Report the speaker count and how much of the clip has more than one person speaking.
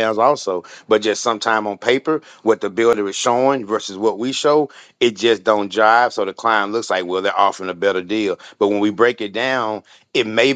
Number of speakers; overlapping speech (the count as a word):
one, no overlap